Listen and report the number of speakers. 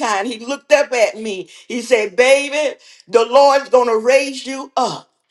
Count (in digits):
1